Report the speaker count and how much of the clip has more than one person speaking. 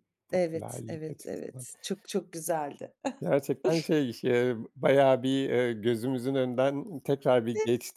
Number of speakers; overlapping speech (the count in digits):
2, about 11%